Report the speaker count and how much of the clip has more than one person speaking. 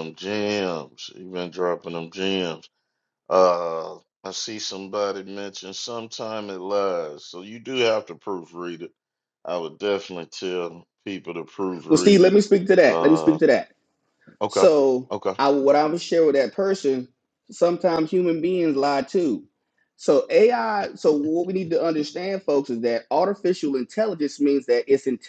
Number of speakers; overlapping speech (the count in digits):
2, about 5%